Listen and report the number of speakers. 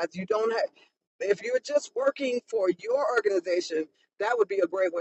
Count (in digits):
1